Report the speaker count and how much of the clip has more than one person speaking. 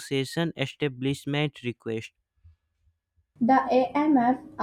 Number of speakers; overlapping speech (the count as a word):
two, no overlap